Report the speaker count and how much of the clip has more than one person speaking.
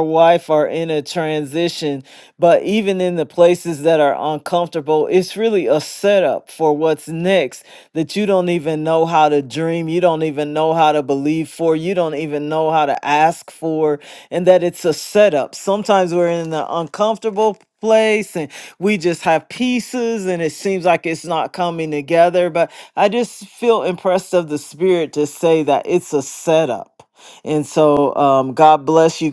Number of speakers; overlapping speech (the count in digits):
1, no overlap